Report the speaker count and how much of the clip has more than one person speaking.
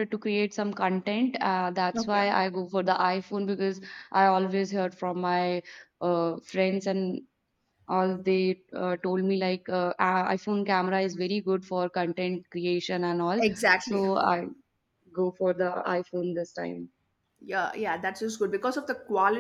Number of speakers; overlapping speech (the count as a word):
two, about 3%